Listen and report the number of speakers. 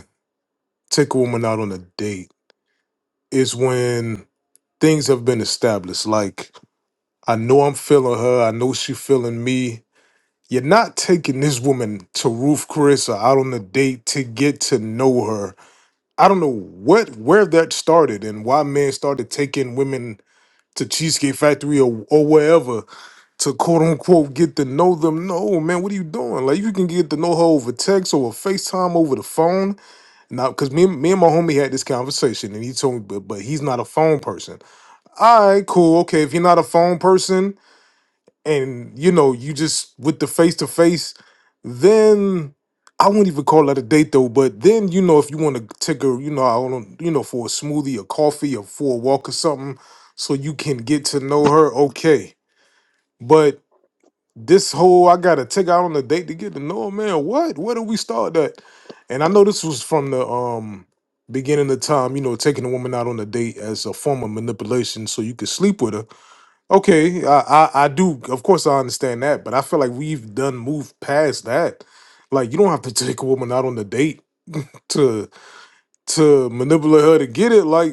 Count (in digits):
1